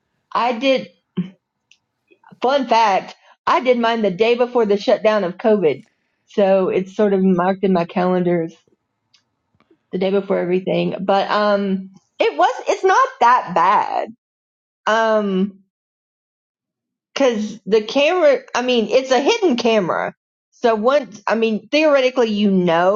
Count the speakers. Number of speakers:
1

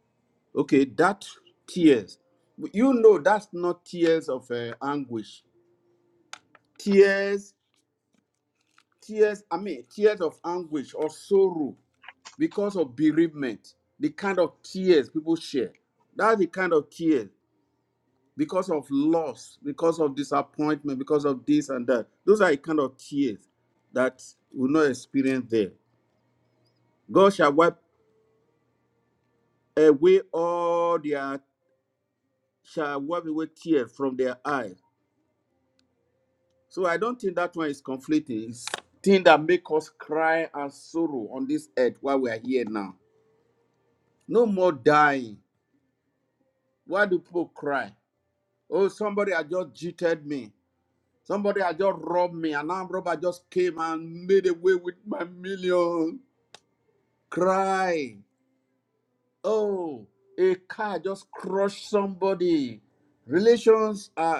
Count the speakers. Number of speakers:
1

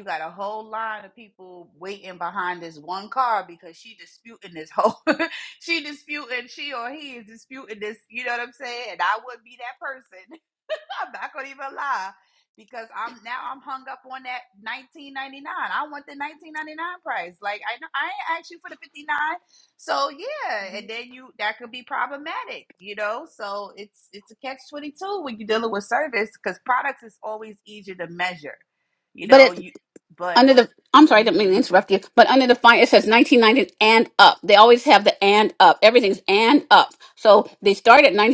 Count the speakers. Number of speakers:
2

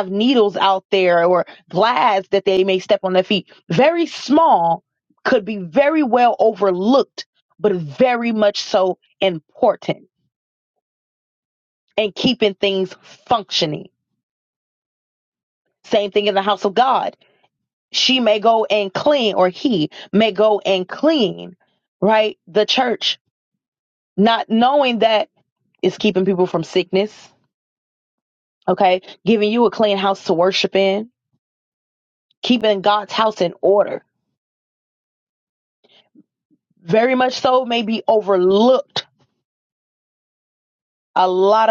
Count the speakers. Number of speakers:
1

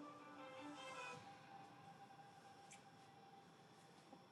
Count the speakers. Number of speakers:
0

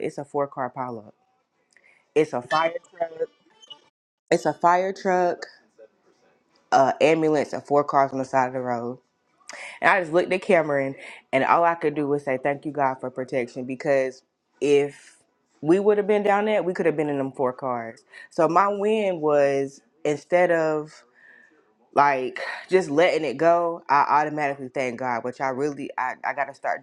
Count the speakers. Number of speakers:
1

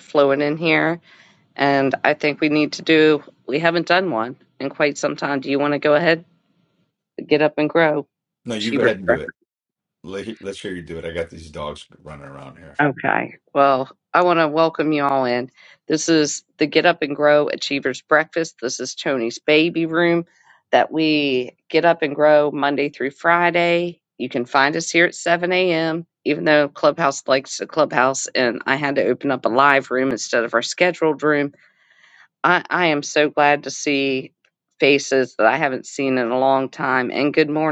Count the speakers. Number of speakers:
2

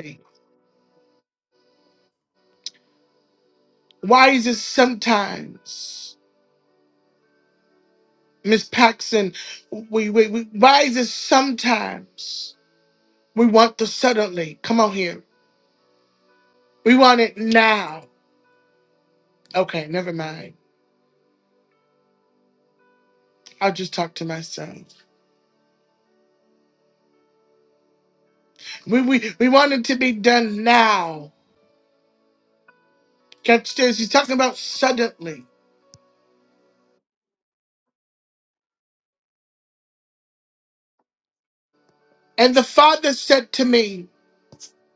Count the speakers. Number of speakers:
1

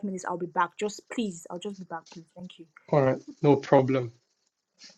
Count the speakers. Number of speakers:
2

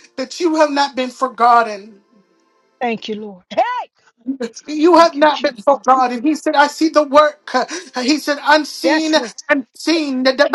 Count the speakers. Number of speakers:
2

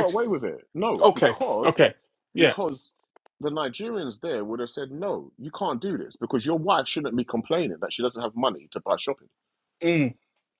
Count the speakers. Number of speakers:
2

